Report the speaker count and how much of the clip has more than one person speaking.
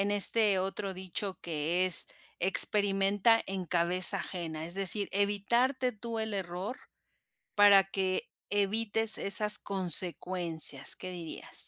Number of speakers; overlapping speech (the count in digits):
1, no overlap